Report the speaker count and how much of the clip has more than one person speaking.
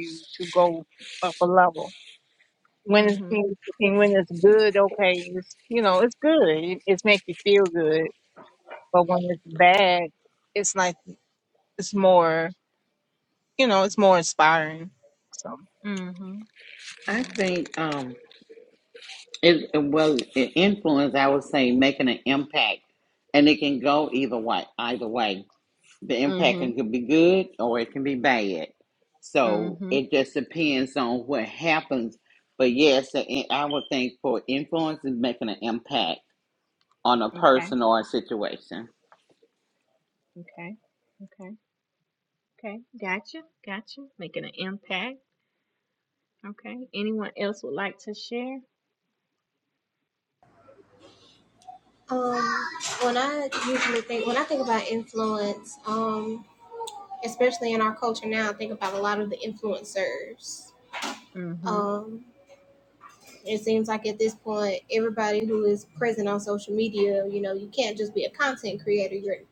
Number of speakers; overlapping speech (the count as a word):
four, about 3%